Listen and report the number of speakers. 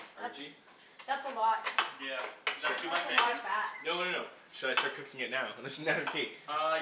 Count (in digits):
3